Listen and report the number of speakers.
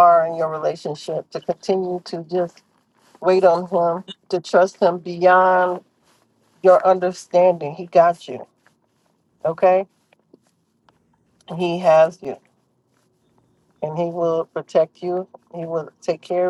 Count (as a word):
one